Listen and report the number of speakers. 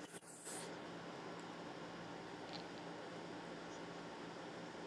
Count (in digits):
0